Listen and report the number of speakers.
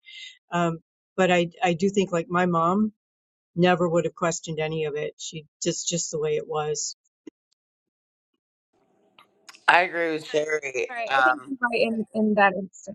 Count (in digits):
3